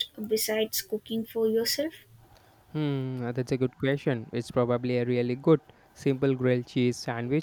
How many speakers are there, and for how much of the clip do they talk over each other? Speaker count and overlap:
2, no overlap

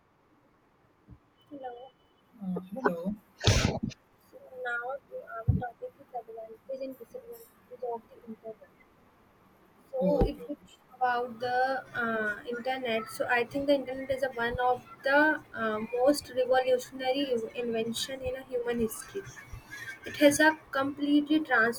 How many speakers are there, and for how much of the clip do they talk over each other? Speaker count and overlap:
2, about 2%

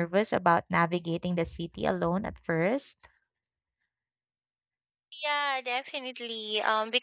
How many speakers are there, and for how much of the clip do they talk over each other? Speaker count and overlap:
2, no overlap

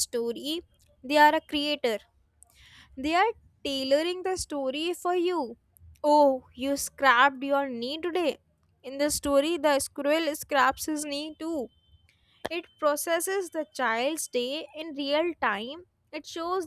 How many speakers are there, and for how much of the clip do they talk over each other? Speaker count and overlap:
1, no overlap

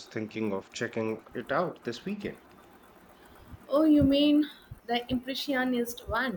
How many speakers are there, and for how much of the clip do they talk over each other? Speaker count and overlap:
2, no overlap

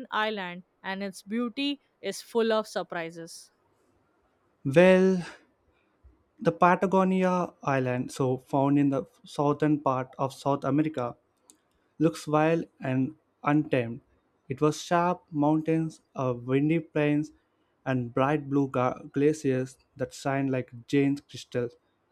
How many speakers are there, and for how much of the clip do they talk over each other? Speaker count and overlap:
2, no overlap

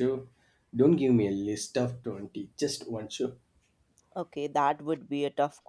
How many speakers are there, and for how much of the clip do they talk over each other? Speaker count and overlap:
2, no overlap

